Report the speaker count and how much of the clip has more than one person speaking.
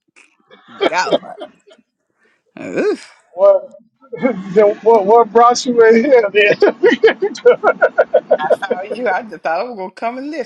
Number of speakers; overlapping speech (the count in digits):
2, no overlap